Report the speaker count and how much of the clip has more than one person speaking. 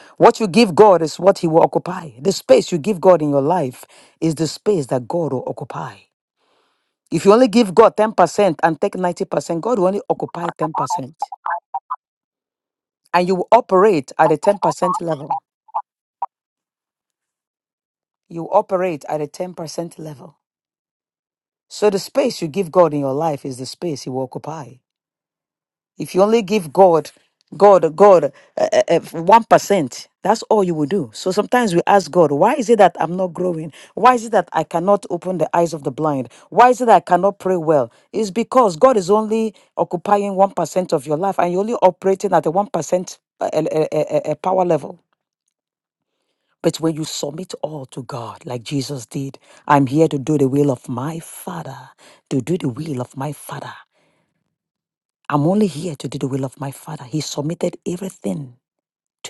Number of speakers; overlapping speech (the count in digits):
1, no overlap